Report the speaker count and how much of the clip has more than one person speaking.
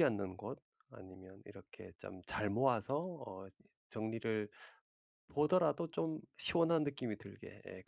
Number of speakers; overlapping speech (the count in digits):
1, no overlap